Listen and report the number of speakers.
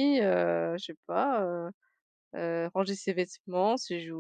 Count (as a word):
one